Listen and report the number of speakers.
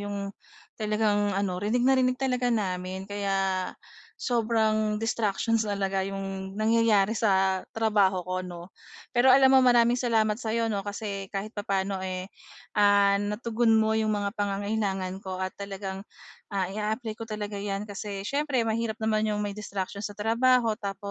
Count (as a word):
one